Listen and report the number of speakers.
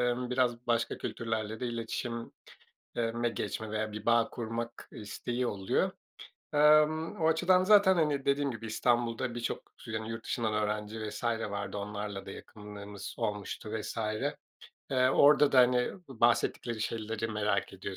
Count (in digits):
1